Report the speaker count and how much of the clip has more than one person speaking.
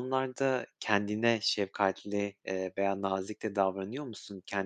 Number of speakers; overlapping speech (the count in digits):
1, no overlap